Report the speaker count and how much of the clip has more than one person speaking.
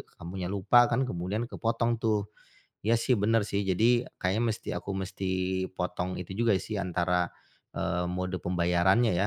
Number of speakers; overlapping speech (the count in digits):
1, no overlap